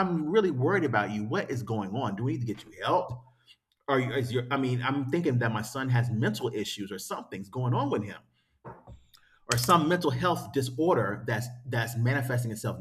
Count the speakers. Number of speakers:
1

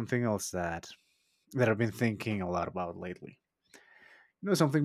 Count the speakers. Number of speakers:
1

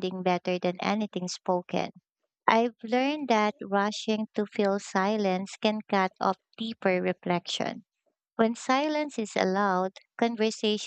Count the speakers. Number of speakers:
1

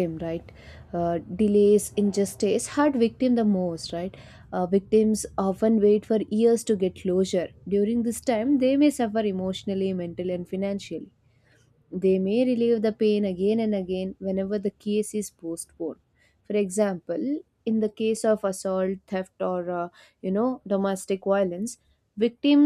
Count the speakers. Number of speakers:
1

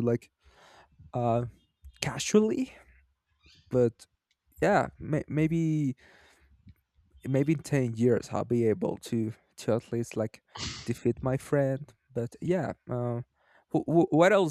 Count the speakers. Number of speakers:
1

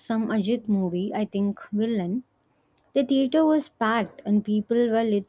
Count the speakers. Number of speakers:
1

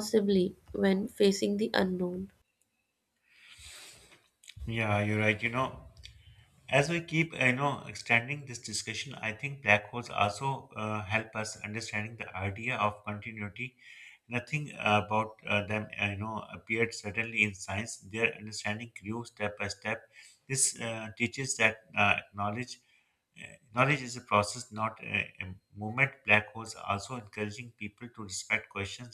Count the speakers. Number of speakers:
2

